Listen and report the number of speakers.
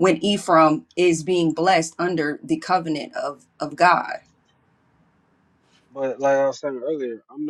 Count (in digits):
2